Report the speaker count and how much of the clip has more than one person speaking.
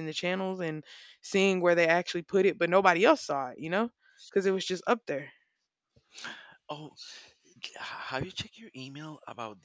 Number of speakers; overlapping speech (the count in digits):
2, no overlap